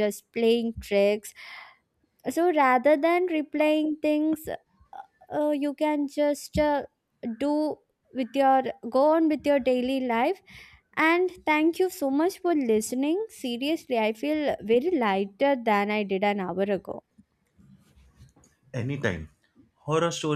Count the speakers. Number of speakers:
two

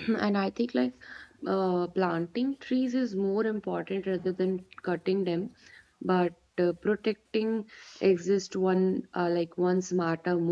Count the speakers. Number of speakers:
one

